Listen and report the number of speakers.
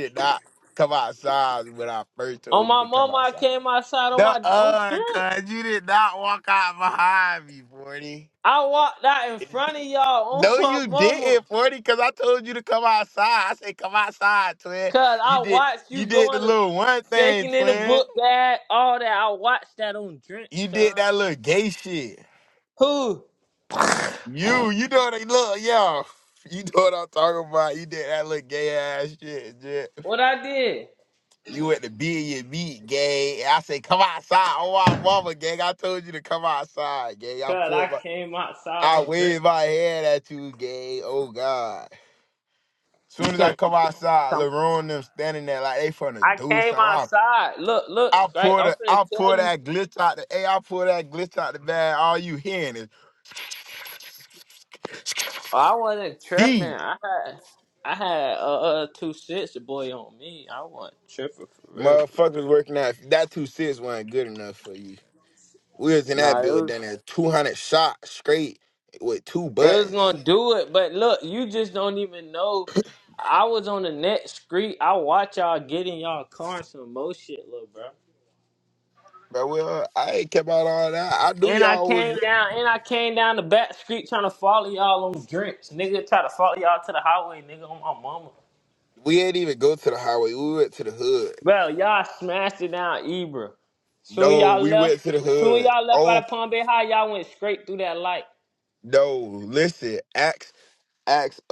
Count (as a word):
two